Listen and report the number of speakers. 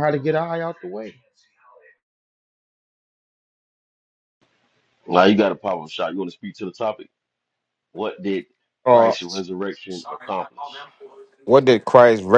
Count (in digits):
3